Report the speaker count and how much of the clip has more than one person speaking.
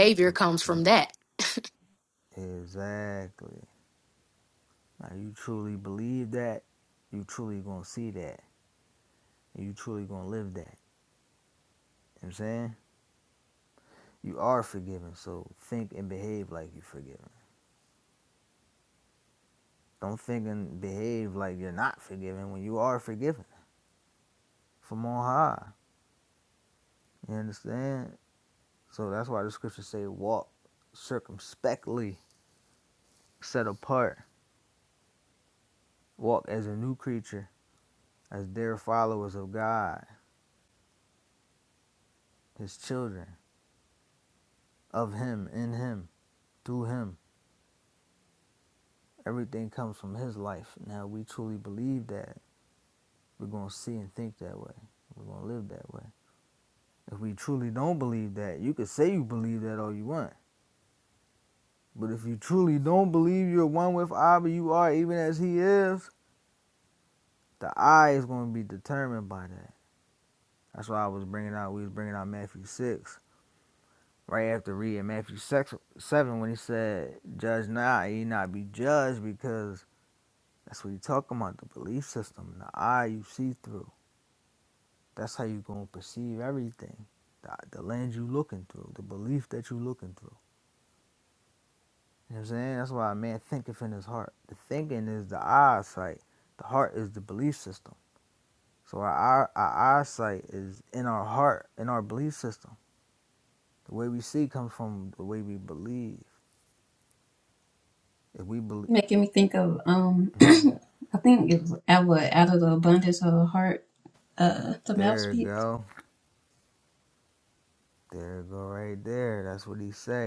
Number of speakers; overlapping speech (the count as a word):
three, under 1%